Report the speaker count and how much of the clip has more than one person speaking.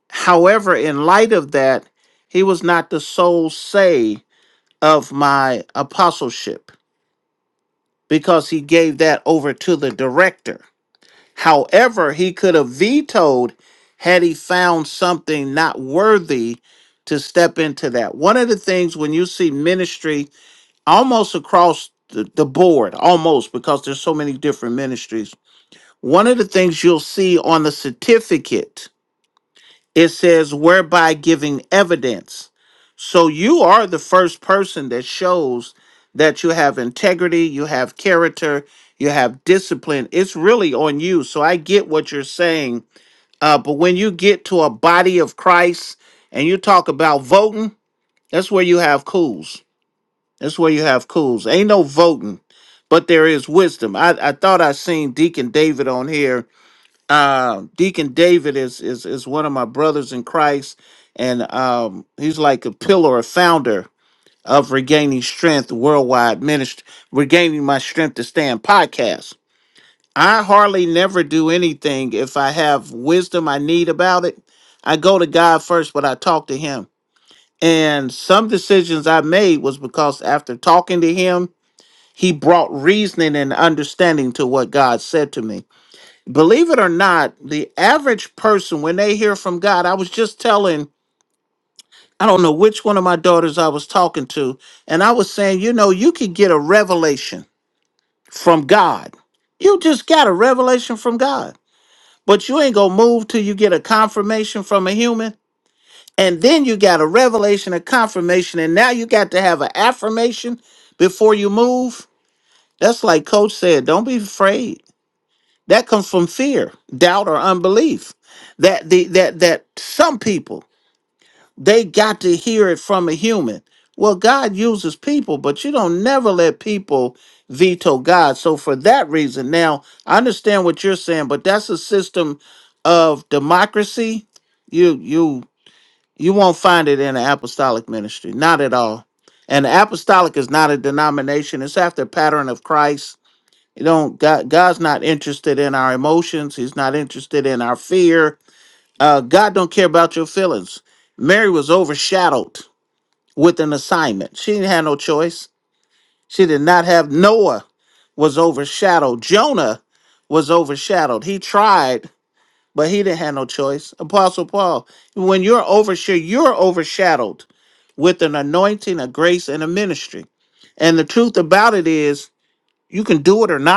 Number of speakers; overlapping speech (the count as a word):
one, no overlap